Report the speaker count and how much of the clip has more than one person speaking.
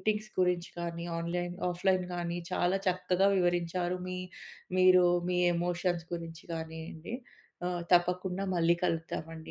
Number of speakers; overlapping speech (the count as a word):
one, no overlap